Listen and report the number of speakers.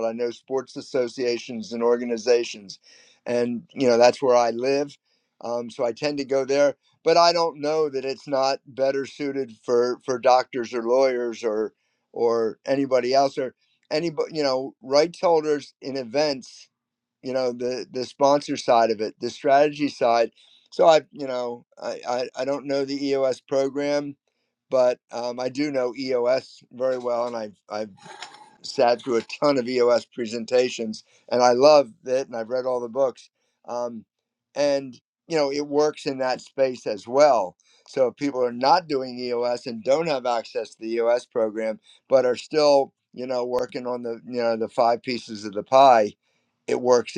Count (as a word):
one